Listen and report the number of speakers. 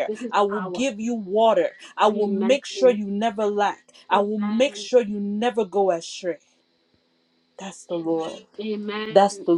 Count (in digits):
2